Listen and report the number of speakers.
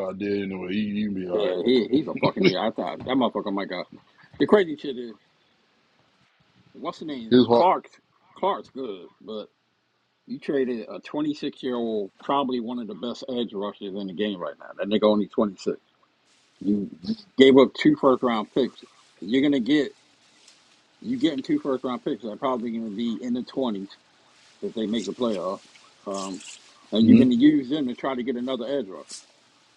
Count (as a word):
two